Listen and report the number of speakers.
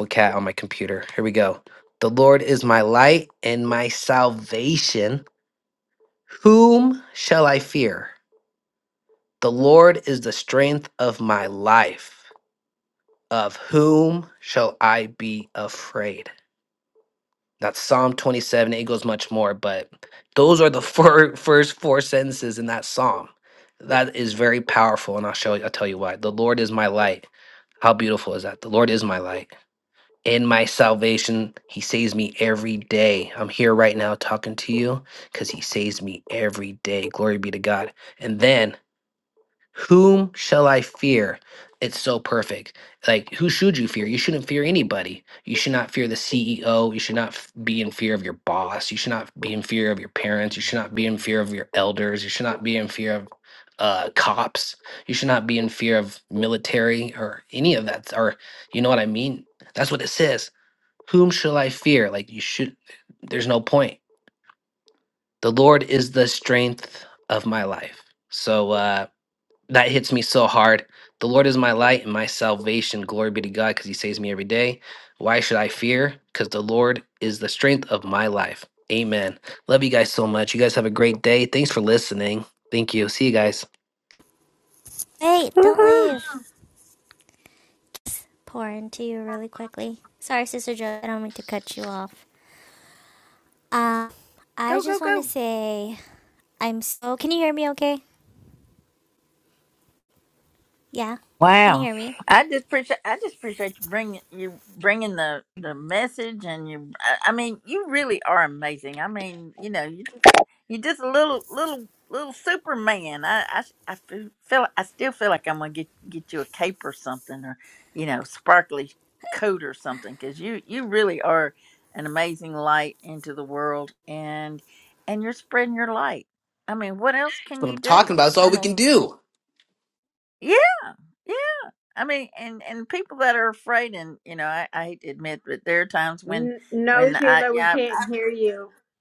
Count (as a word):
four